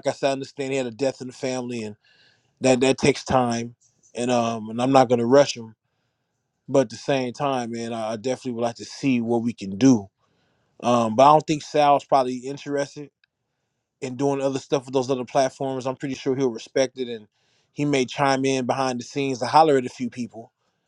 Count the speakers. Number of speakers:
1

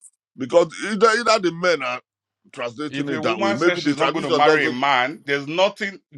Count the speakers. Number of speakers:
2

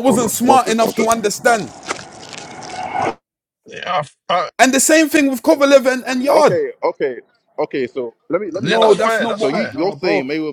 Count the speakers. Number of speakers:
3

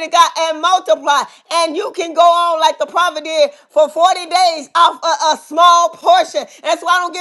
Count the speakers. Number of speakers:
1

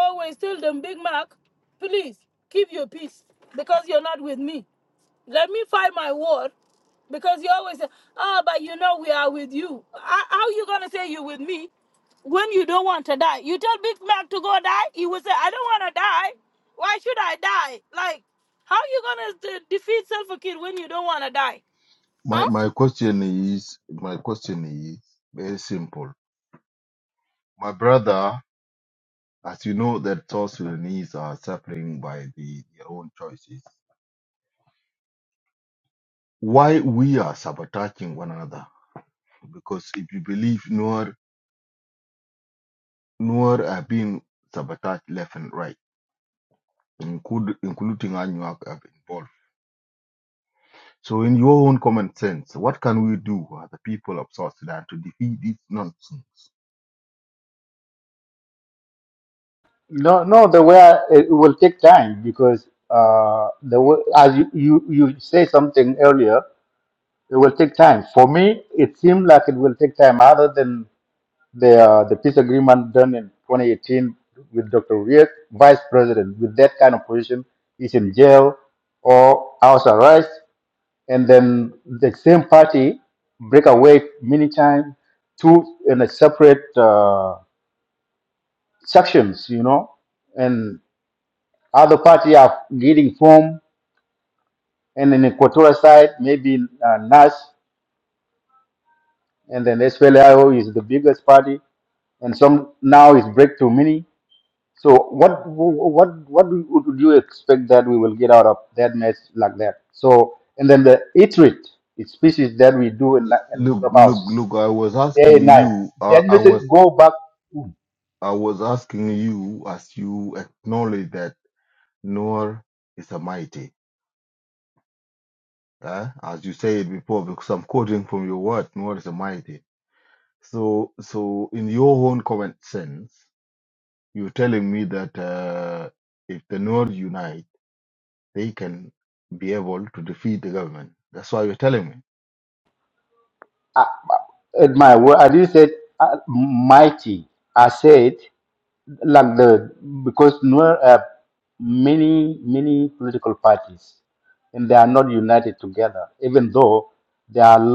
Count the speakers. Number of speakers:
3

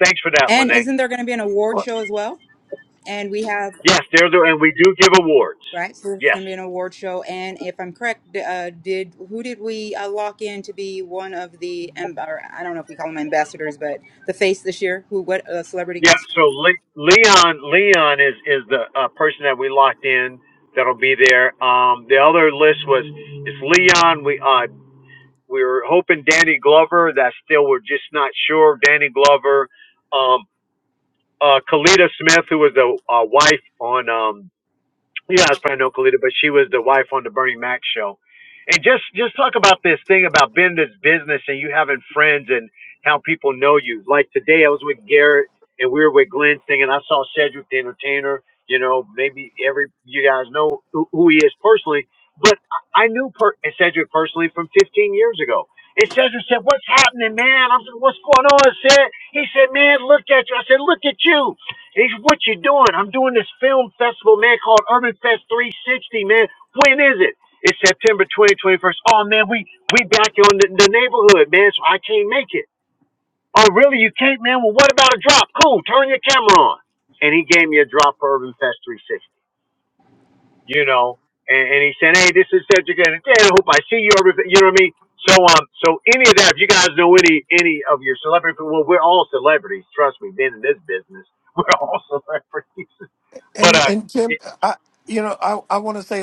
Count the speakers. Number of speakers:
3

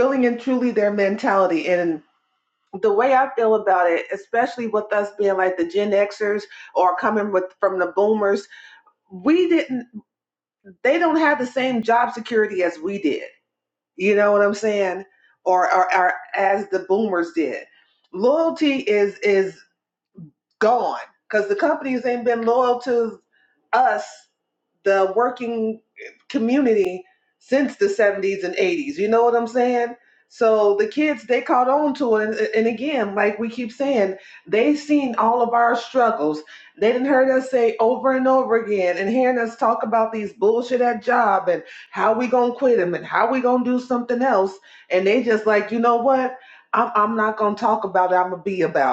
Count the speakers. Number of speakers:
1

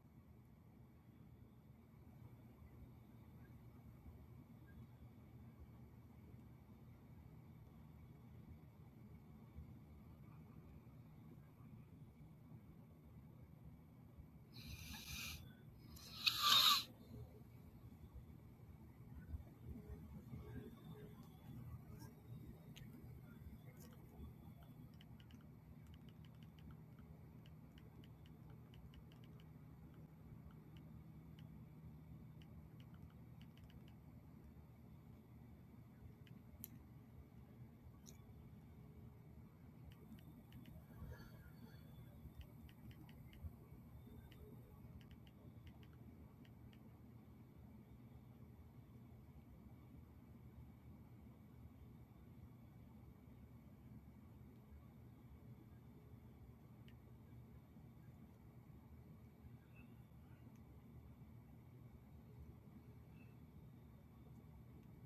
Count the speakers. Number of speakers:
0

